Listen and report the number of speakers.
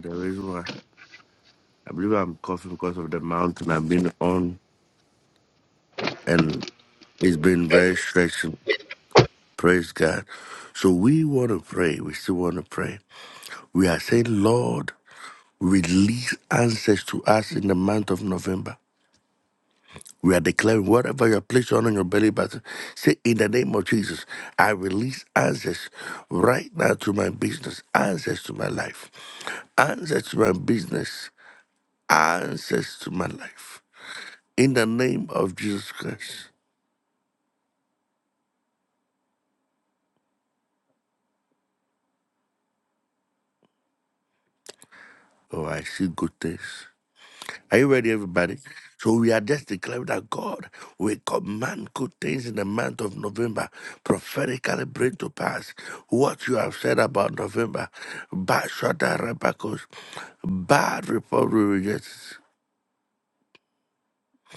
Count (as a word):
one